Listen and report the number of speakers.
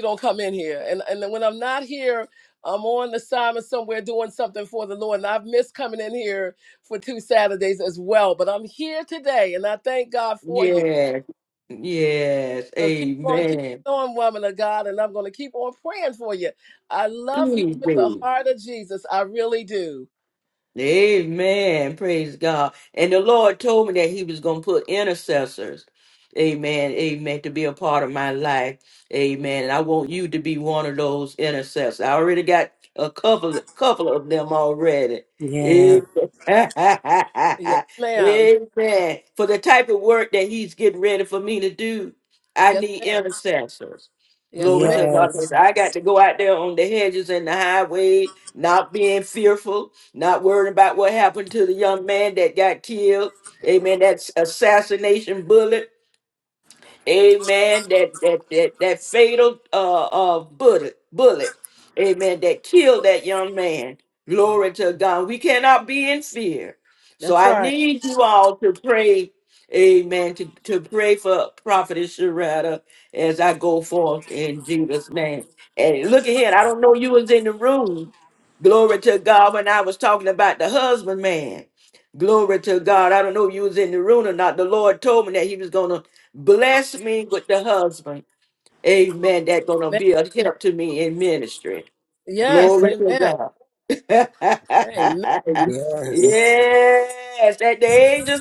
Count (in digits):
3